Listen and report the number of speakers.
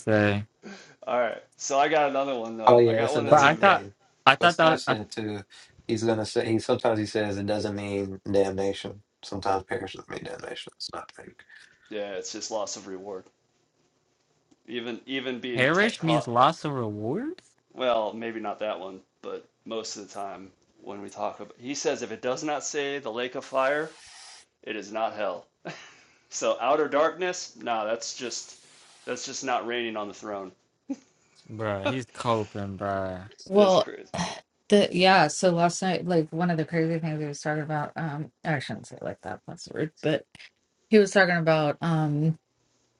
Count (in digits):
4